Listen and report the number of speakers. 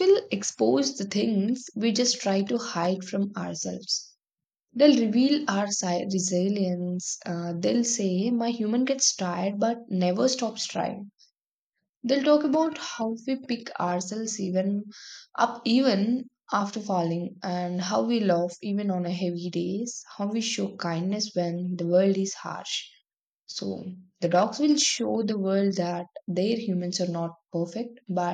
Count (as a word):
one